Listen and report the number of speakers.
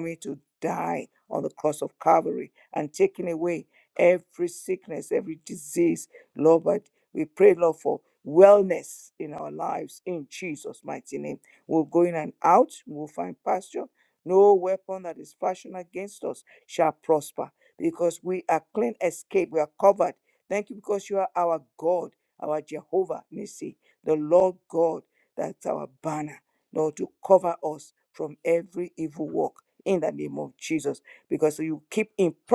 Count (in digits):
1